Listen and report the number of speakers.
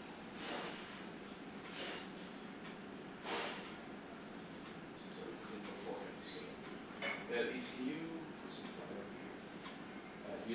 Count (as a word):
one